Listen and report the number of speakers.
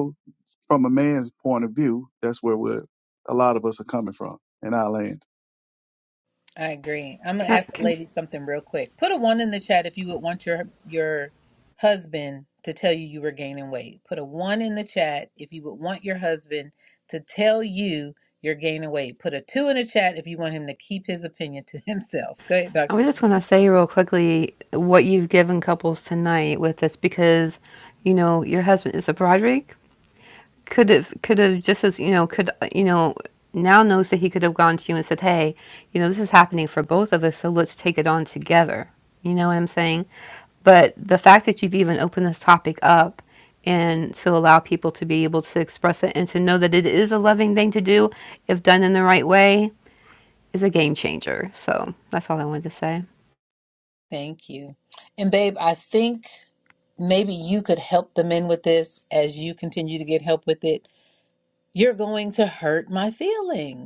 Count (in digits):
3